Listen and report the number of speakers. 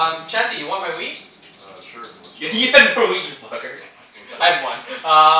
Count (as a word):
three